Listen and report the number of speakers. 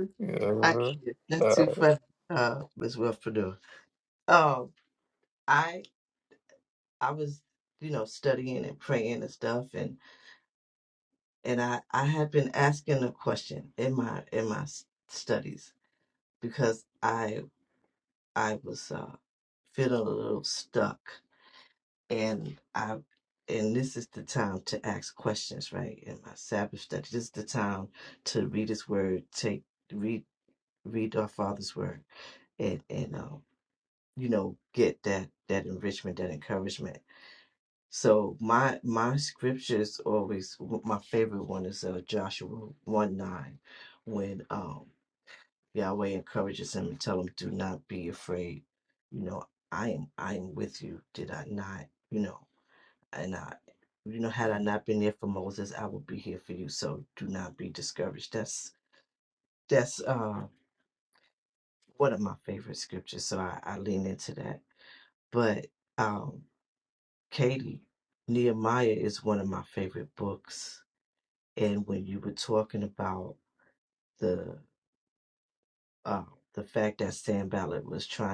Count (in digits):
2